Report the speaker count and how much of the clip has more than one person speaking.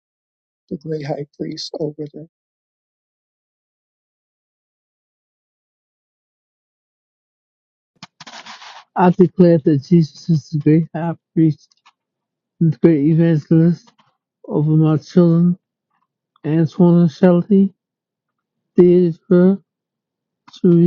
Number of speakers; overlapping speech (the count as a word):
two, no overlap